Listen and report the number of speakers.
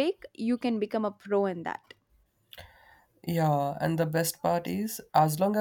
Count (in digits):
2